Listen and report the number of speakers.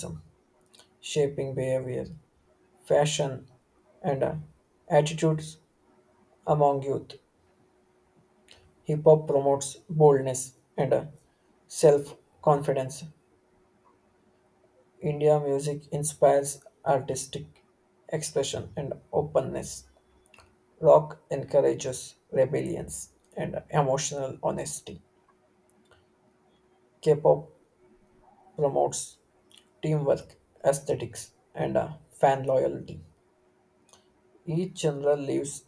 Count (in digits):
1